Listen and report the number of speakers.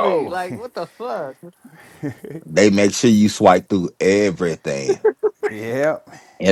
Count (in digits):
3